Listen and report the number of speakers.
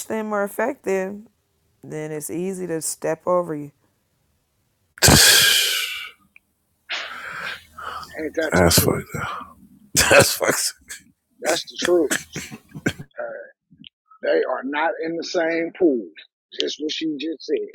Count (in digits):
3